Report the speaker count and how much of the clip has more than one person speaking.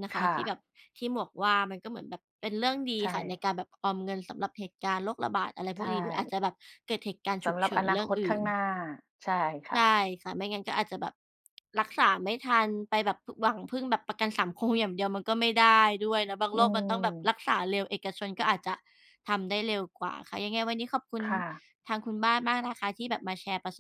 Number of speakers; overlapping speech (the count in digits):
2, about 8%